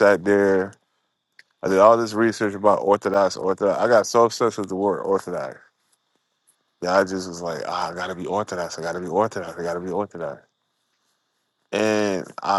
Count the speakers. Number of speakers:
1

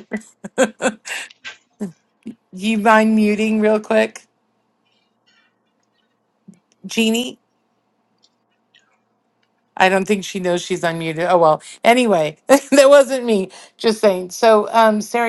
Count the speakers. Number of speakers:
1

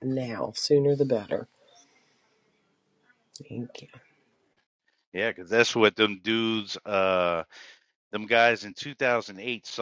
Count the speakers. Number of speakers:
2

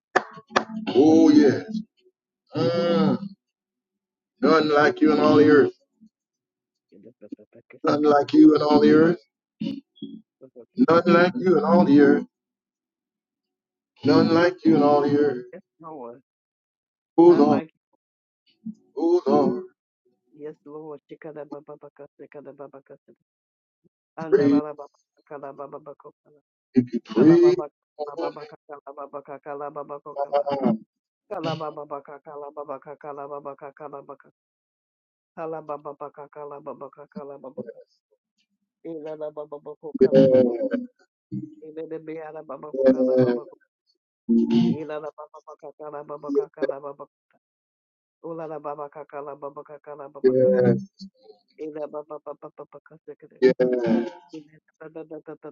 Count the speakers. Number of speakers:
2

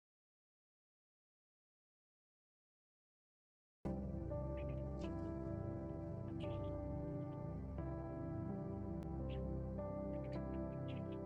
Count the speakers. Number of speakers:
0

